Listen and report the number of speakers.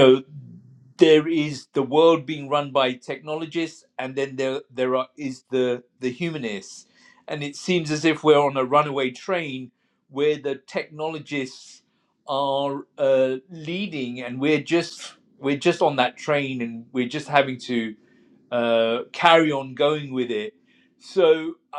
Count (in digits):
1